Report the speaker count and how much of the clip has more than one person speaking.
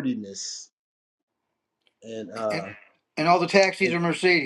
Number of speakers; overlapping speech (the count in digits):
2, about 4%